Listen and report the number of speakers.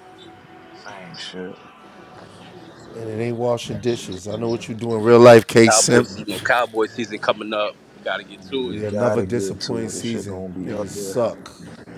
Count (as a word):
three